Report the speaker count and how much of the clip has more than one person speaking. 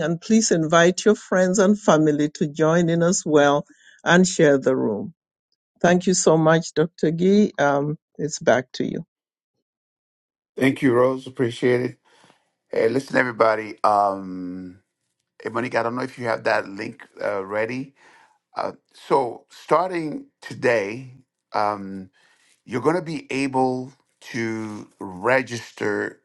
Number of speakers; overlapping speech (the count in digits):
2, no overlap